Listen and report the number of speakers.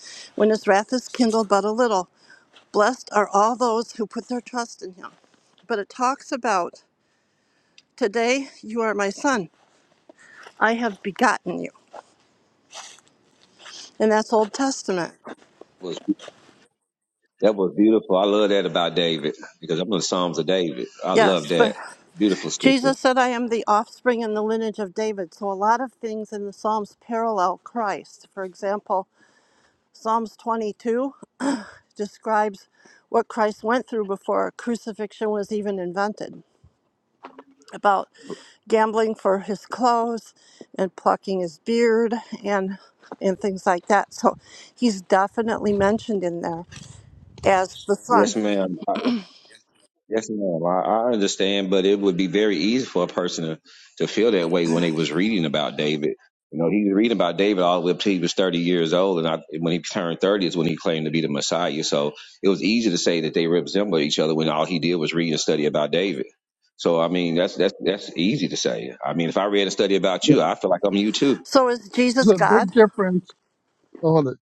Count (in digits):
3